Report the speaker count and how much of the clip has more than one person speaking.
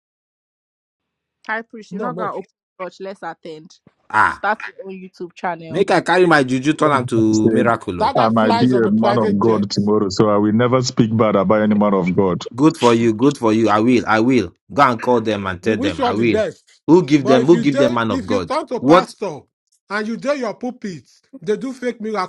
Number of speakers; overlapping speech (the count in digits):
4, about 21%